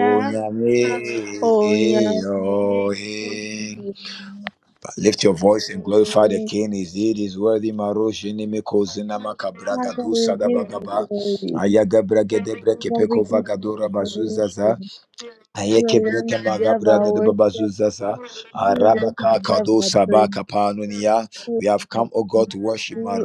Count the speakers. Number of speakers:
two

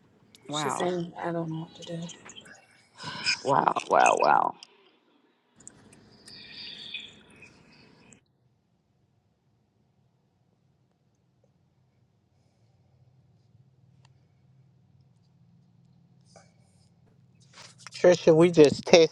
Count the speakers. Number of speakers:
three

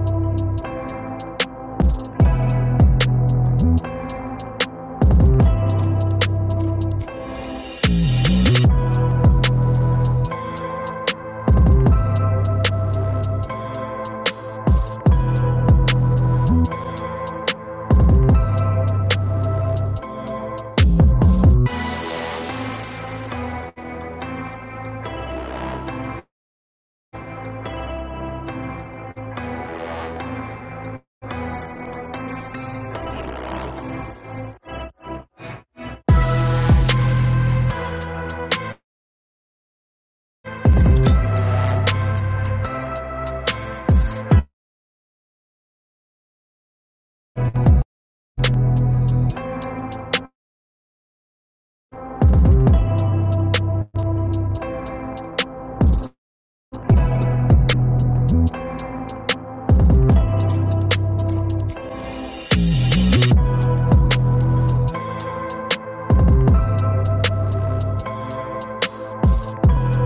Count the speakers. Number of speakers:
zero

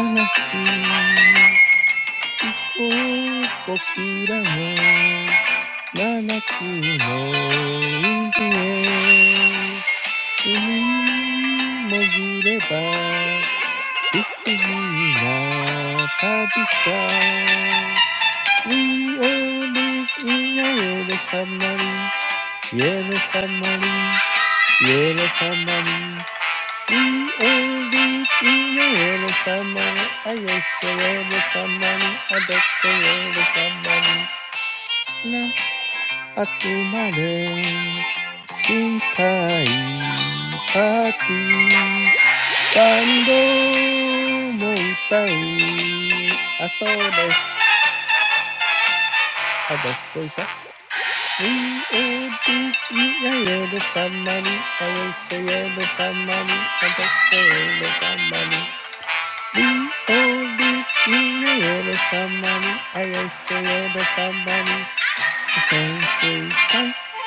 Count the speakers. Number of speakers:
one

